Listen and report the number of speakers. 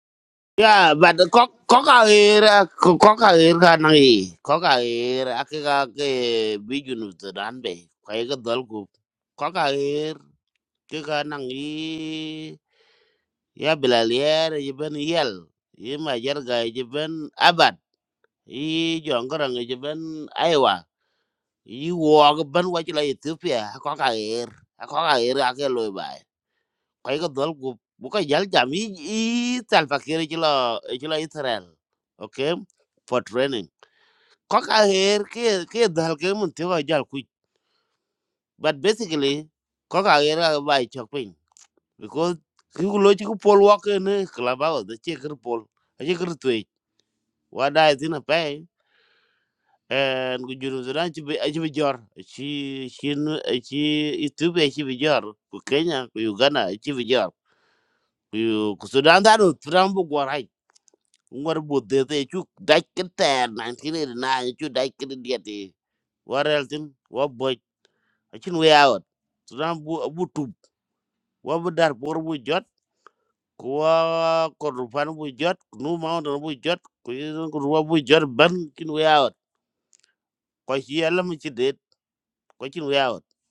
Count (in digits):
1